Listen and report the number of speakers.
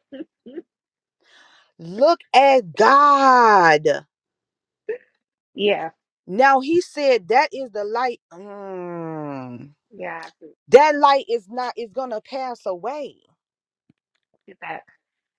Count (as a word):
two